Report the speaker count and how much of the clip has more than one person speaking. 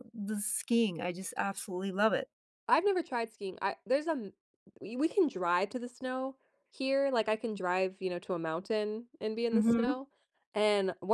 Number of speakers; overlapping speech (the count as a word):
two, about 4%